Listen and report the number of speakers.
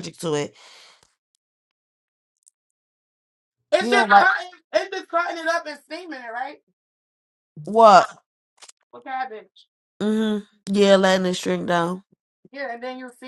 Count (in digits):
2